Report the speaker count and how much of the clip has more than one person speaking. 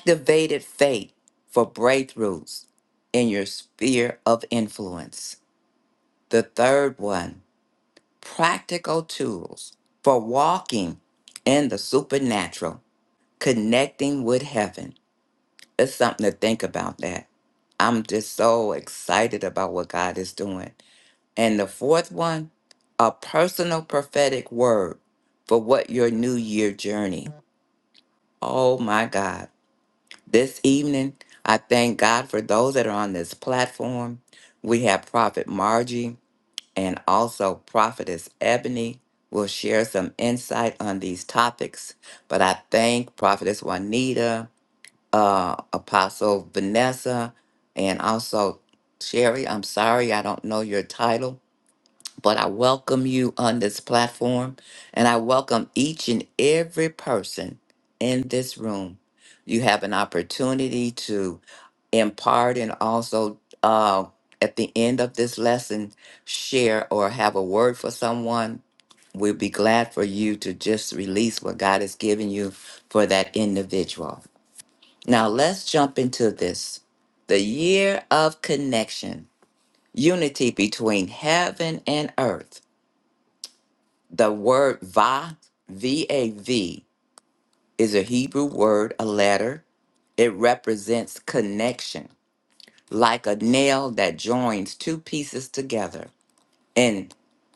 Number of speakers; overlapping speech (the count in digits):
1, no overlap